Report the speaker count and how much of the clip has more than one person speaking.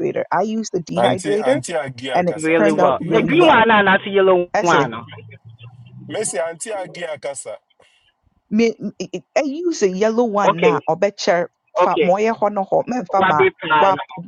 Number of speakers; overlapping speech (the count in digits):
3, about 26%